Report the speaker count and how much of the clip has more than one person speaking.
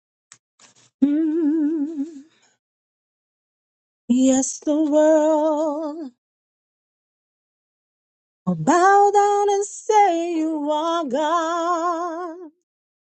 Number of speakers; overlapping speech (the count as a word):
one, no overlap